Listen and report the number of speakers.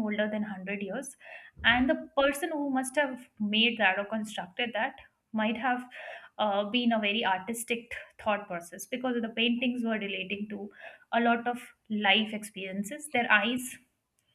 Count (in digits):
1